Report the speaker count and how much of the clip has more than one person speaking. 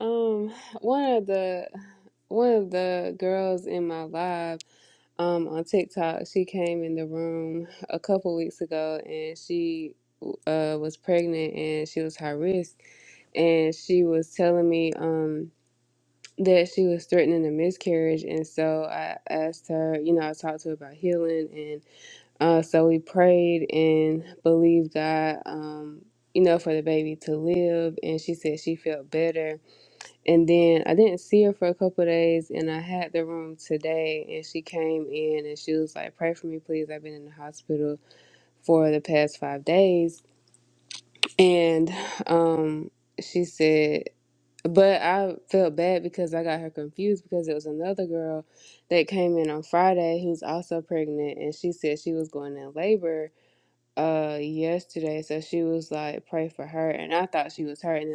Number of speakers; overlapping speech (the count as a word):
one, no overlap